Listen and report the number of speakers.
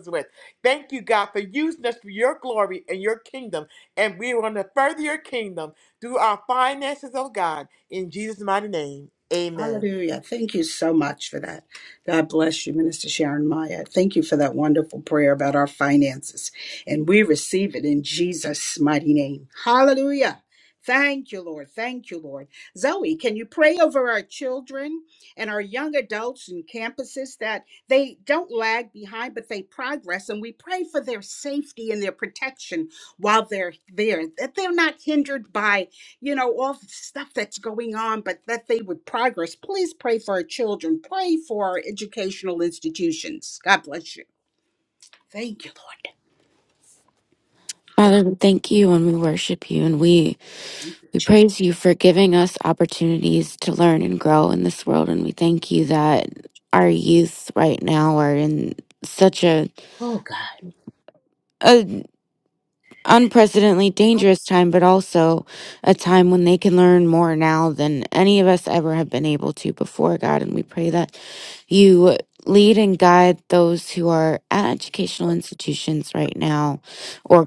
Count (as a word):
three